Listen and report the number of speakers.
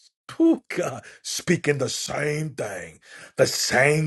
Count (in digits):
1